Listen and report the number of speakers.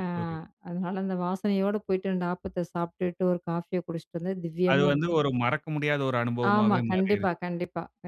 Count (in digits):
2